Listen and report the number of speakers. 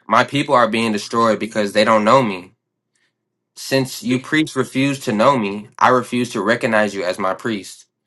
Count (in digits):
1